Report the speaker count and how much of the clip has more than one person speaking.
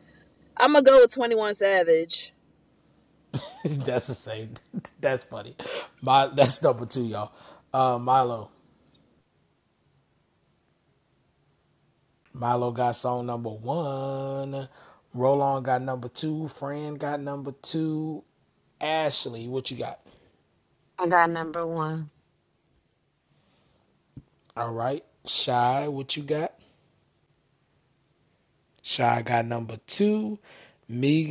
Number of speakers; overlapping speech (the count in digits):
3, no overlap